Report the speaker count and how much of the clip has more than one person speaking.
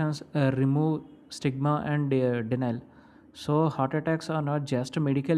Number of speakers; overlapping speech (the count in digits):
1, no overlap